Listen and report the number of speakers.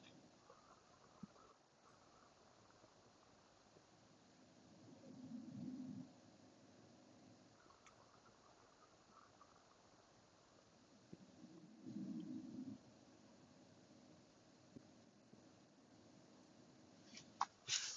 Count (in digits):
0